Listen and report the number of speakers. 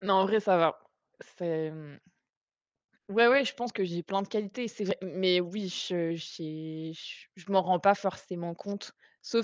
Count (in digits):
1